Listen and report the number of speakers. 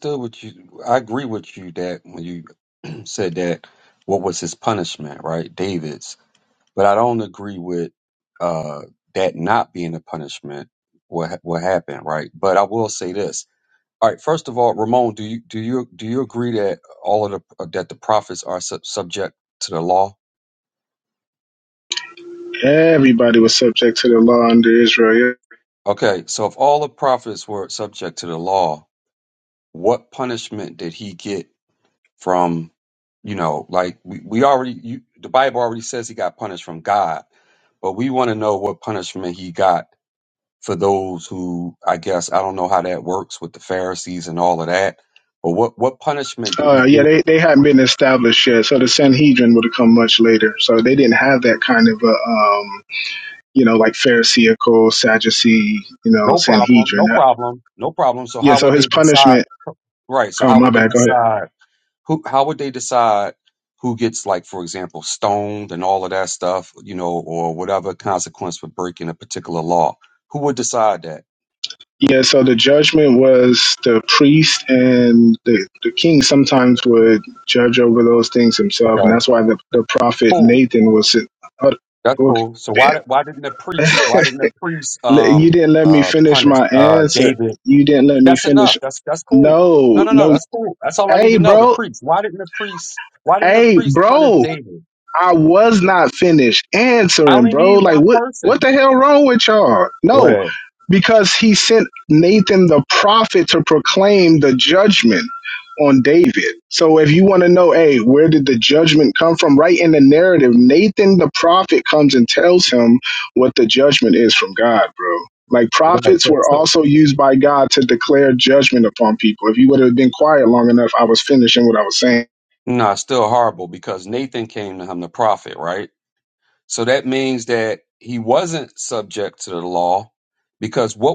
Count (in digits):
2